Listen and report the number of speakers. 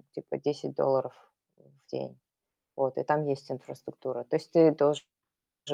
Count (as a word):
one